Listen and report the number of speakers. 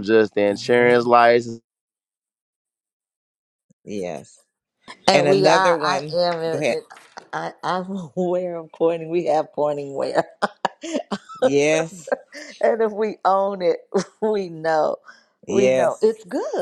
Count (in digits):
3